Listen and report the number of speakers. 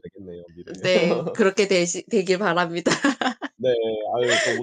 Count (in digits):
2